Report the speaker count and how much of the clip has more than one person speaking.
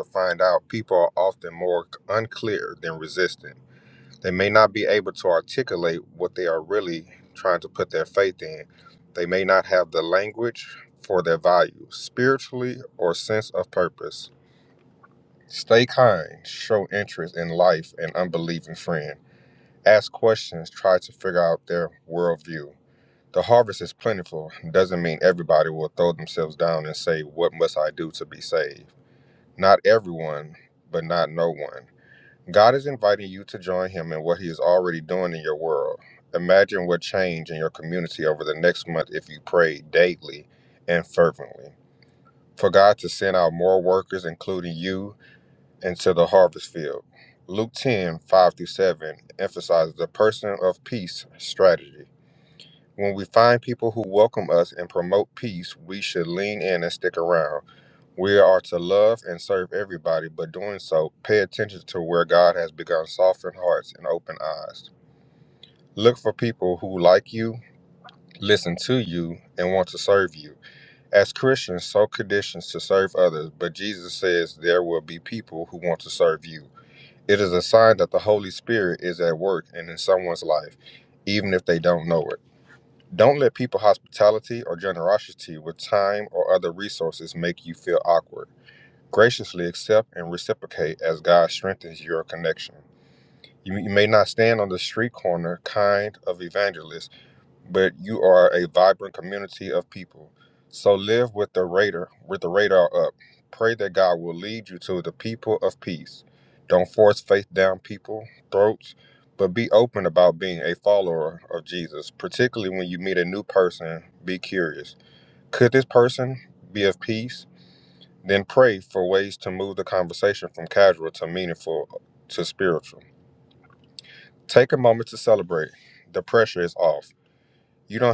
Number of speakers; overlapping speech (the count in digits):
1, no overlap